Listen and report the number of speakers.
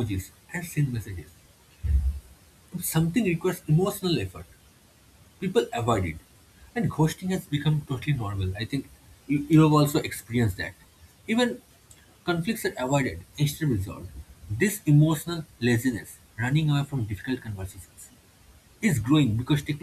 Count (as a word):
one